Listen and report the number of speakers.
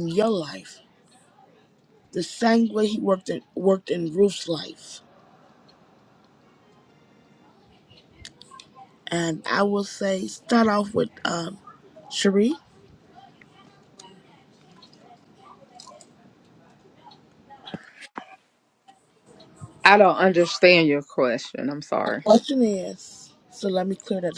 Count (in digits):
2